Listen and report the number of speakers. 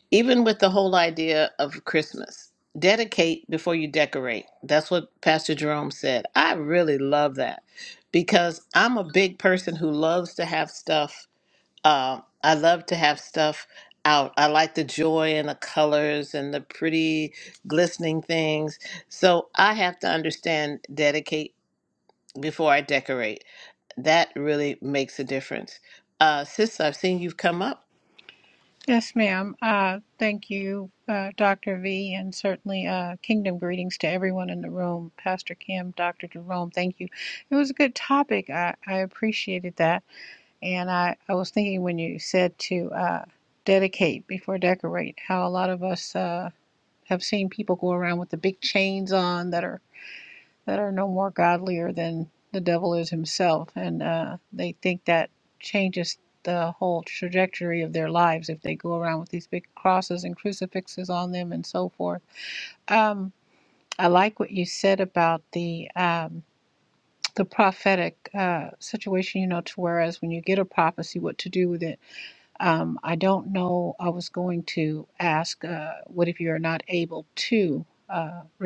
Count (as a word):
two